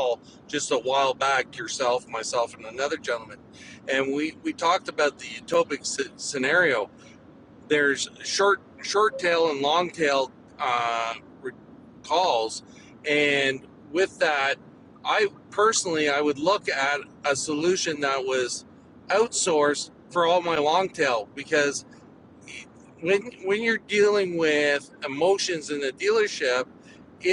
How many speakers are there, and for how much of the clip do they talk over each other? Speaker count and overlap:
1, no overlap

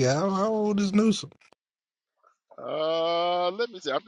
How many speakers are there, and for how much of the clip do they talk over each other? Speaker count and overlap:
2, no overlap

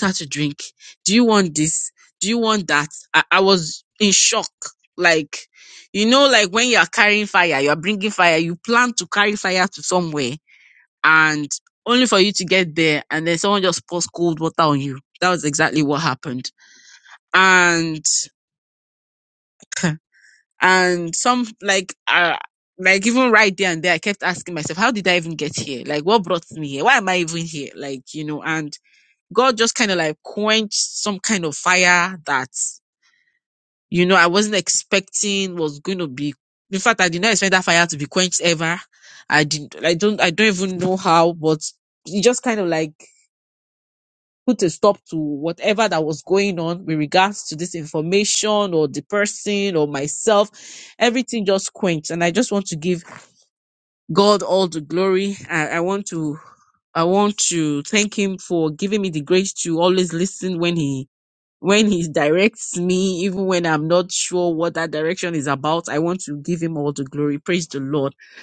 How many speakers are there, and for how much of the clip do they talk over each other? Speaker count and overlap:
1, no overlap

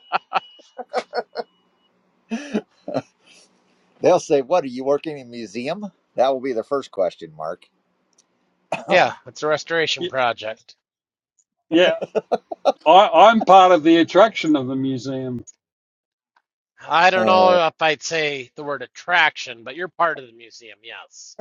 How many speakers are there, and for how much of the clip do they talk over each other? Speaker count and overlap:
3, about 2%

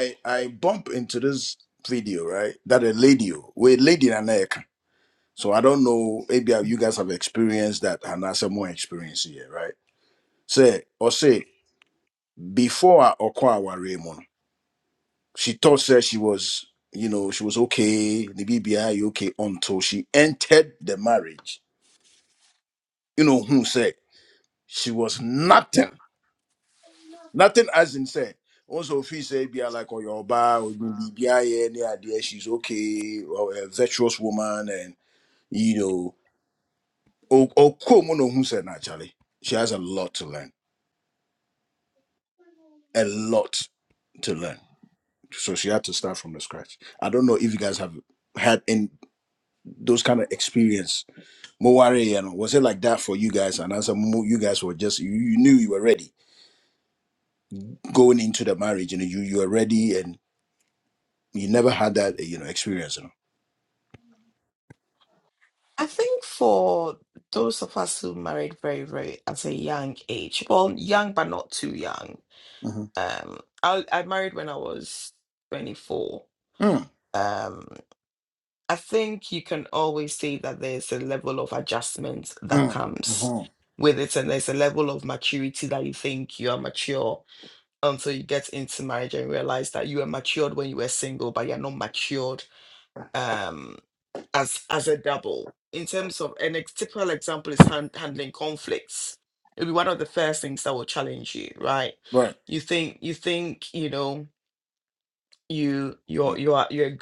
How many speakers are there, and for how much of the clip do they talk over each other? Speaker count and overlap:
2, under 1%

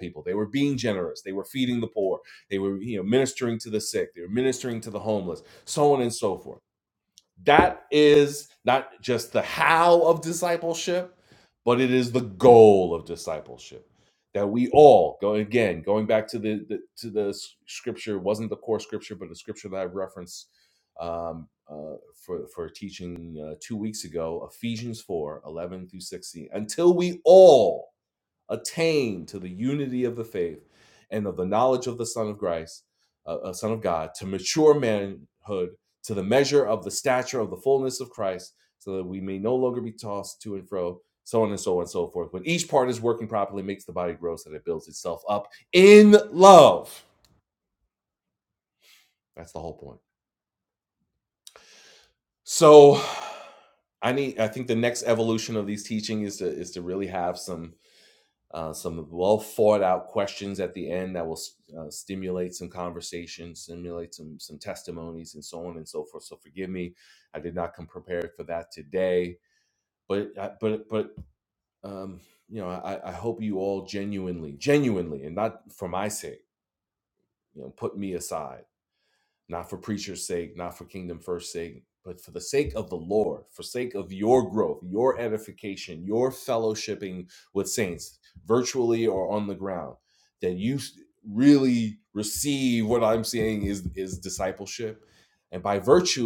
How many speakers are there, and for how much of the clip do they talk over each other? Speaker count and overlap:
1, no overlap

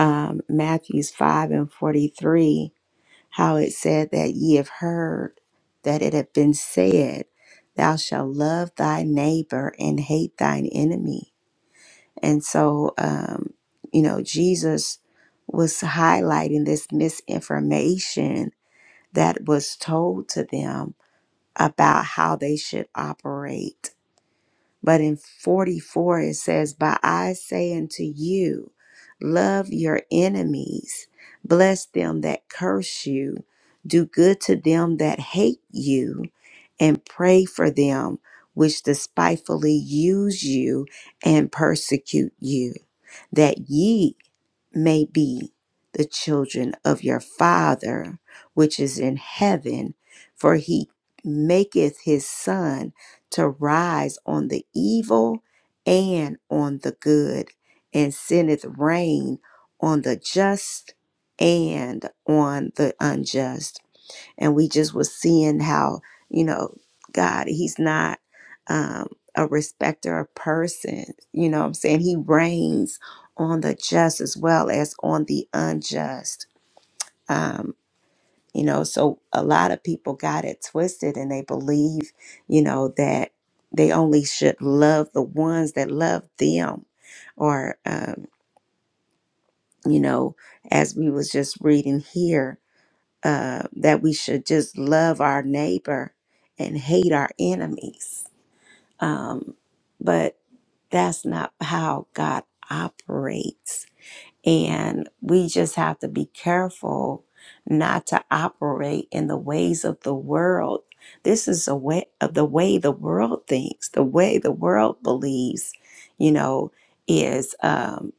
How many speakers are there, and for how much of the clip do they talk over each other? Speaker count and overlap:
1, no overlap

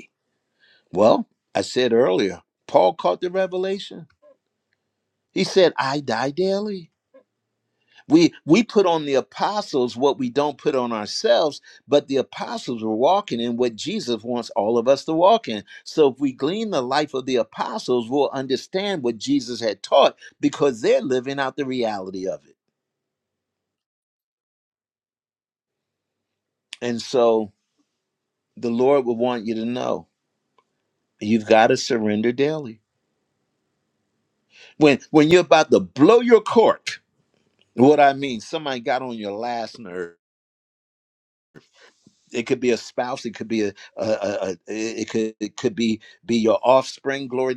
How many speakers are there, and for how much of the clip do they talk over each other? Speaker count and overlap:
1, no overlap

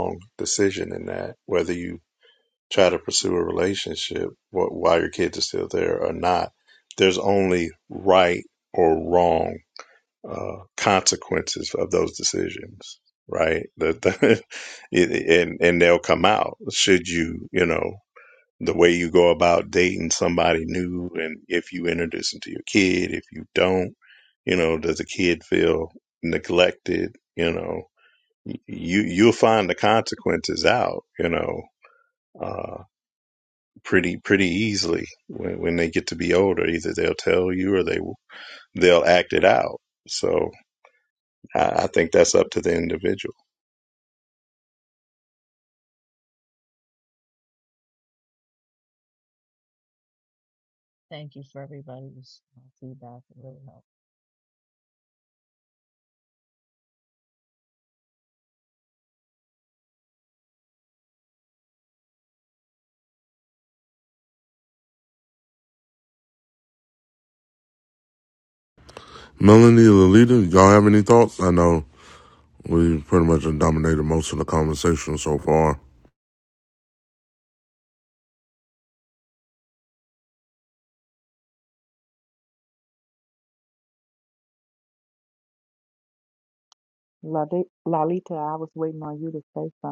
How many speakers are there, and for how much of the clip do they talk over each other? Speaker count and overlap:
4, no overlap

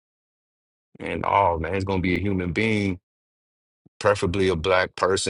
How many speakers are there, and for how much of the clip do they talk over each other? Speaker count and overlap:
1, no overlap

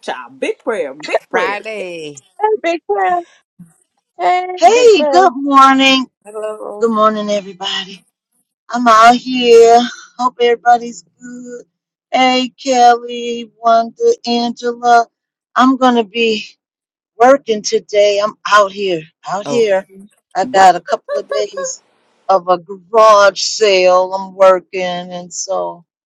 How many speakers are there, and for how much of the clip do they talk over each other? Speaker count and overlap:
4, about 6%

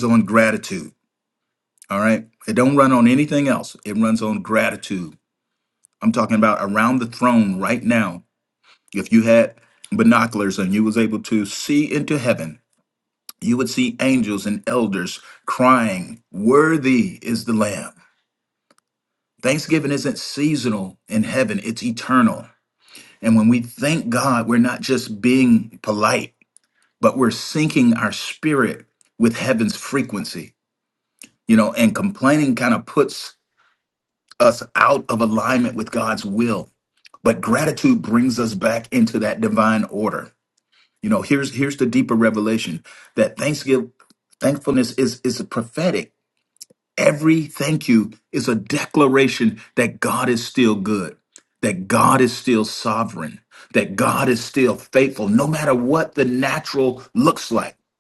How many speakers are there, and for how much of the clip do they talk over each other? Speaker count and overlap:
1, no overlap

